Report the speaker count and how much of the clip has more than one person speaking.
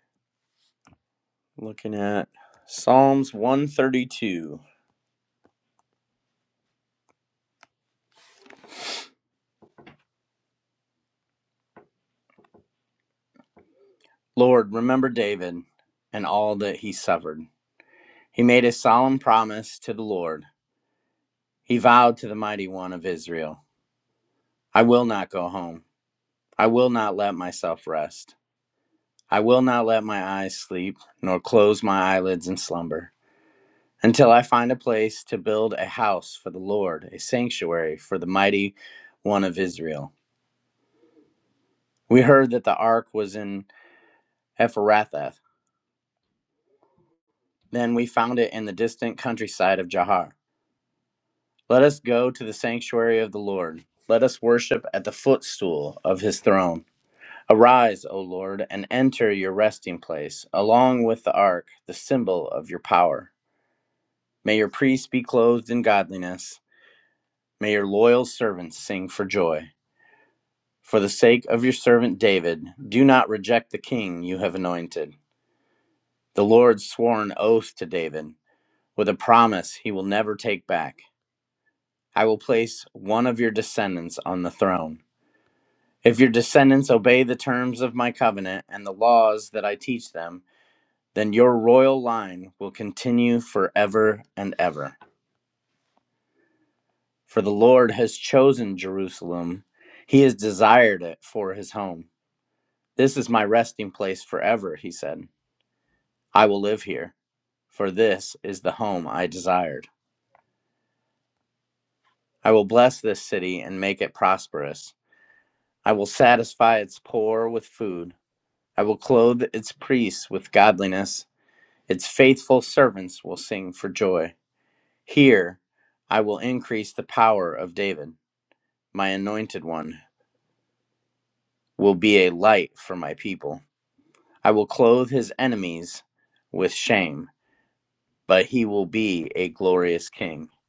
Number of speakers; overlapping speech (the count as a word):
one, no overlap